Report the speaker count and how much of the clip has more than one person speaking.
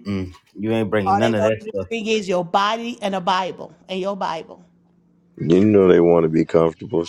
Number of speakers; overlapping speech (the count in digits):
3, about 11%